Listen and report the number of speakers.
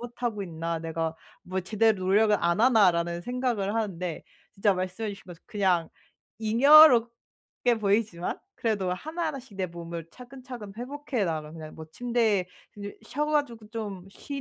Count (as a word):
one